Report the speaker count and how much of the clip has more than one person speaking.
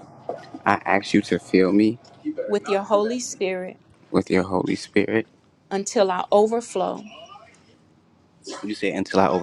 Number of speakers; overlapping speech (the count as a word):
two, no overlap